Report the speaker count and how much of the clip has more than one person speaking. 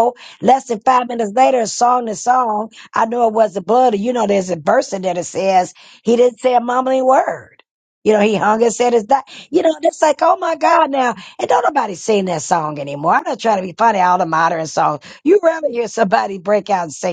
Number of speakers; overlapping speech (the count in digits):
1, no overlap